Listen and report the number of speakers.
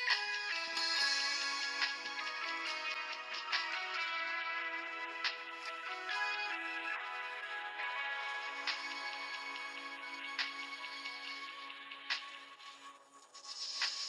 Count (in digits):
0